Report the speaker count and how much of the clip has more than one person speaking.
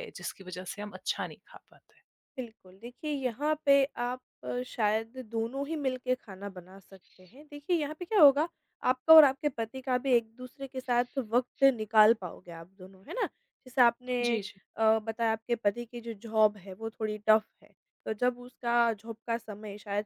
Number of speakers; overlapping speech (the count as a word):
two, under 1%